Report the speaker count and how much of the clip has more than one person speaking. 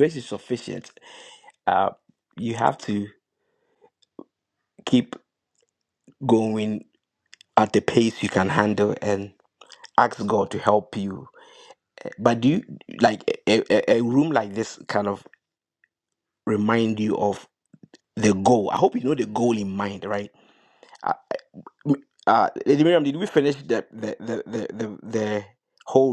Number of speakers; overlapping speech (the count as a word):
one, no overlap